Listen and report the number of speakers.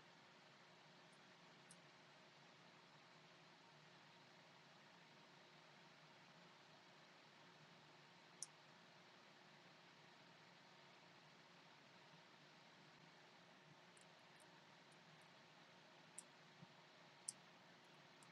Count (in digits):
0